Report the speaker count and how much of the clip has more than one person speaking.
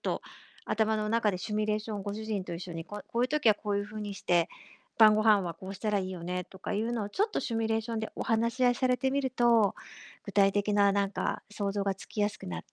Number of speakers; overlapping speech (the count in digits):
1, no overlap